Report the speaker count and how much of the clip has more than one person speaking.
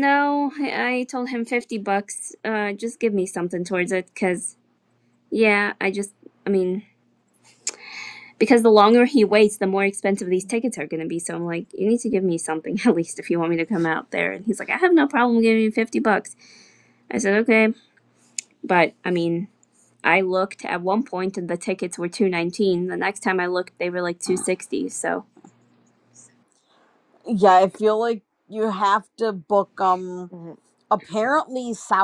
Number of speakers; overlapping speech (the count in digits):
2, no overlap